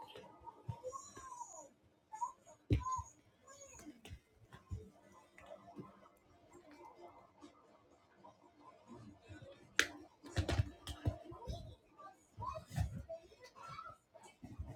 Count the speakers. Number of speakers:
zero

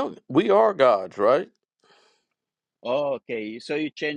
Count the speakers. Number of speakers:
two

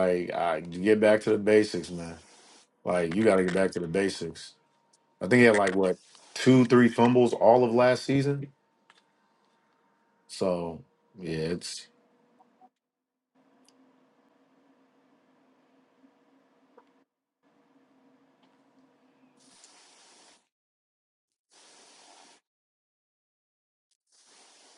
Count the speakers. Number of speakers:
one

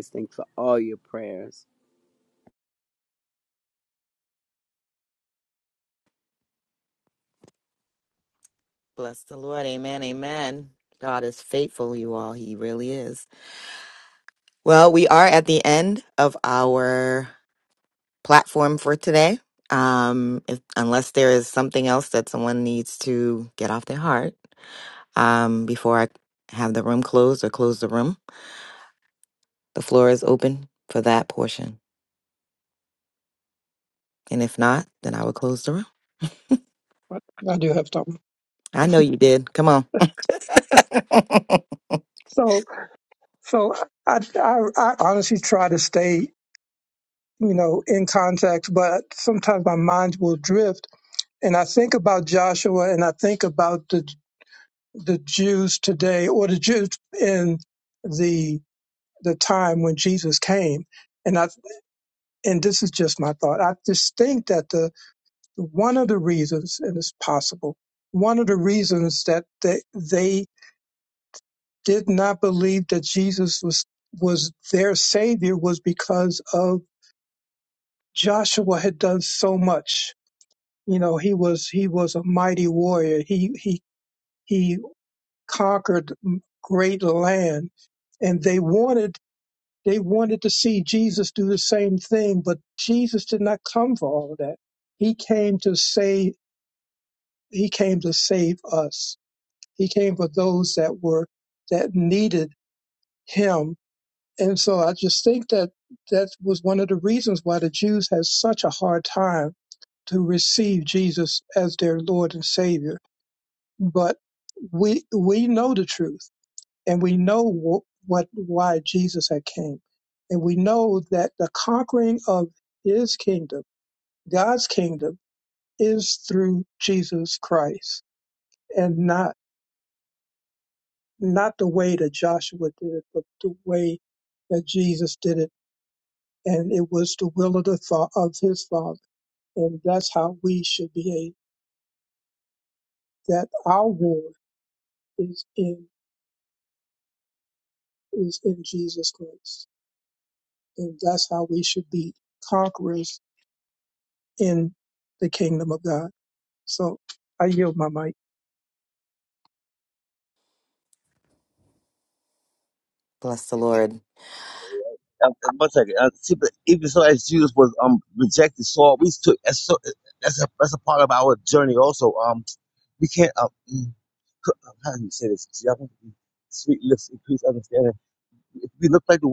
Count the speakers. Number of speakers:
four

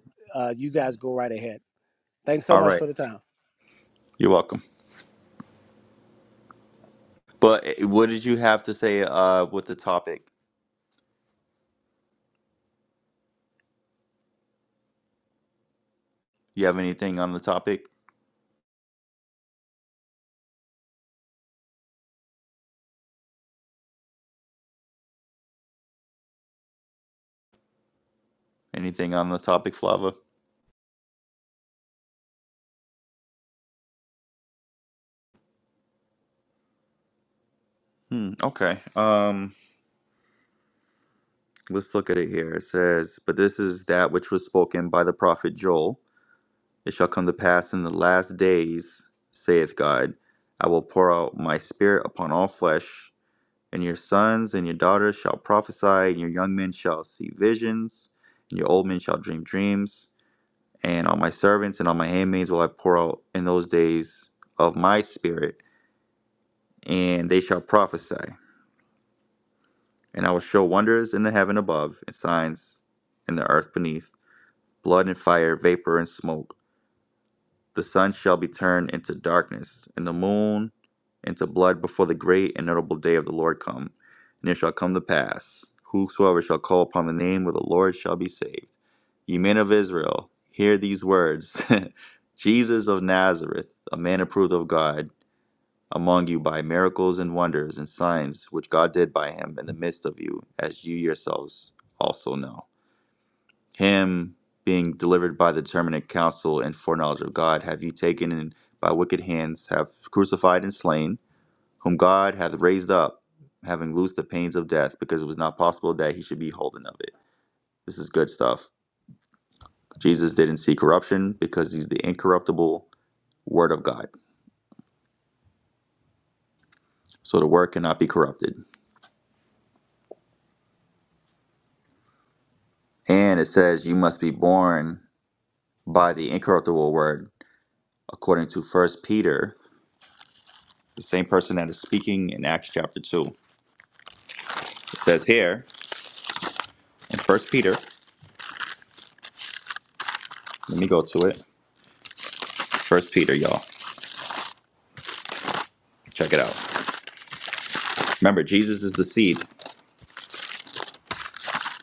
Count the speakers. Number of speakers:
two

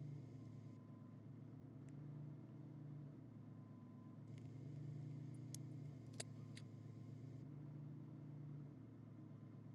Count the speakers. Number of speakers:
zero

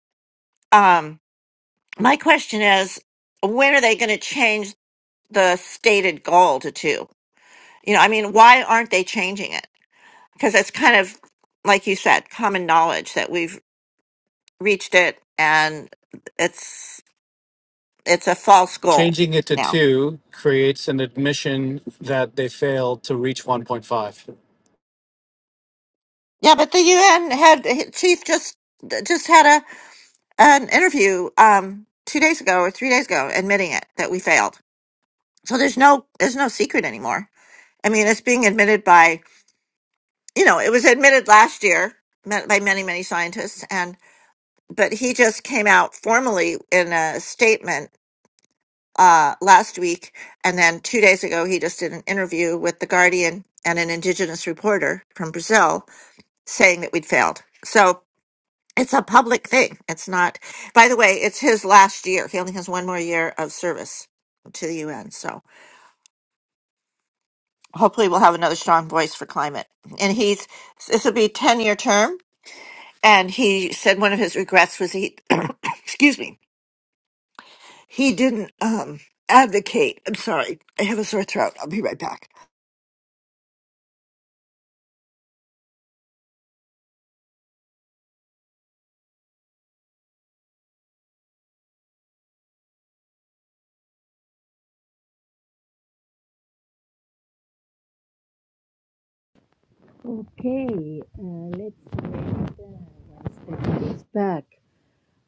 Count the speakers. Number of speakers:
three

